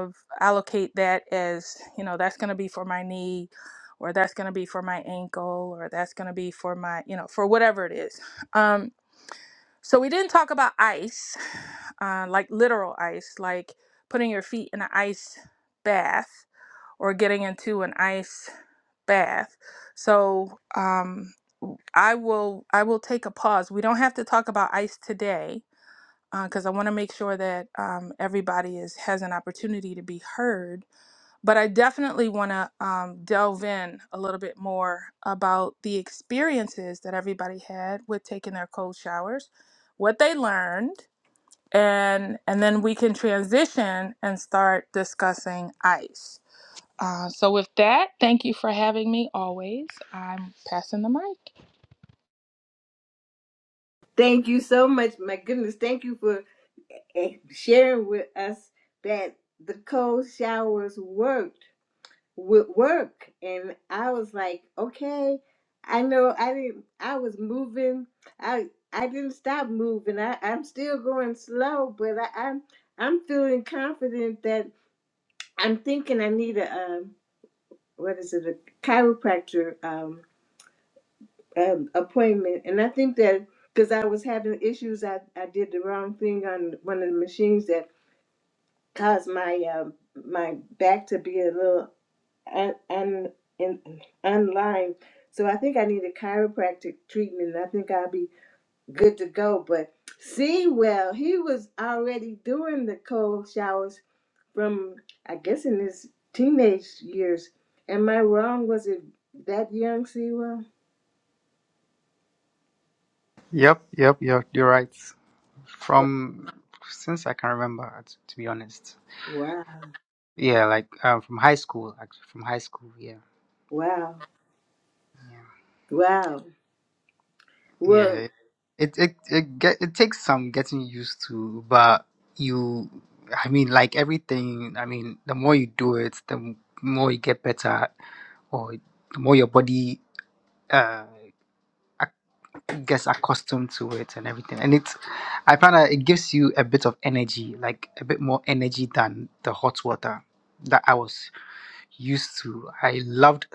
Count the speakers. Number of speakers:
3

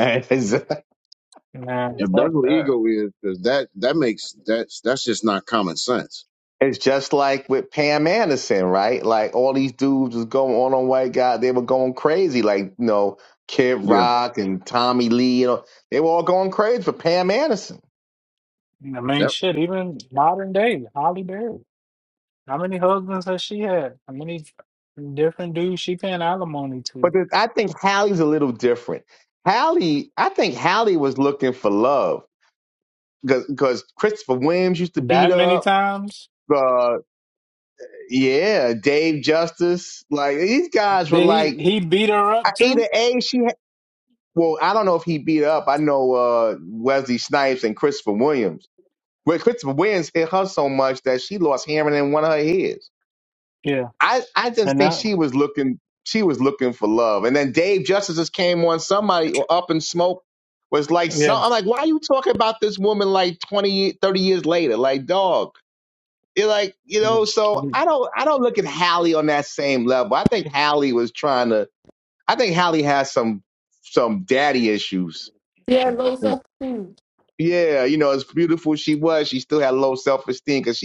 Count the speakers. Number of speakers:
4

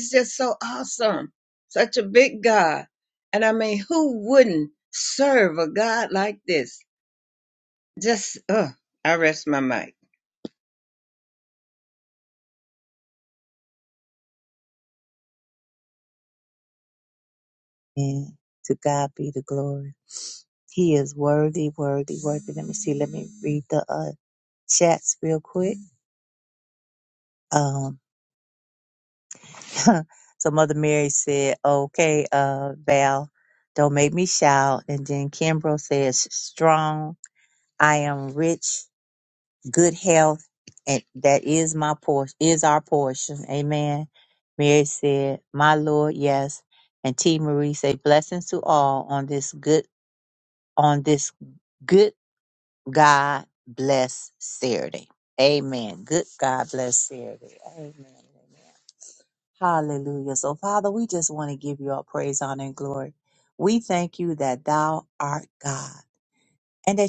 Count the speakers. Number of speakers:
2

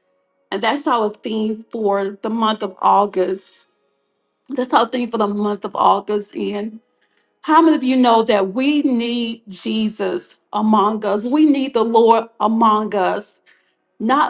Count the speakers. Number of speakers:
1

